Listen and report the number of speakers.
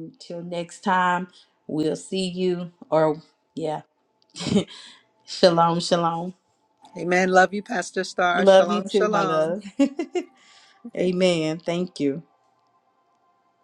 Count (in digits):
2